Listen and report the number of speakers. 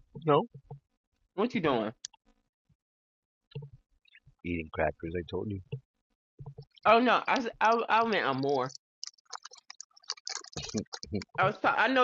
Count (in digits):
2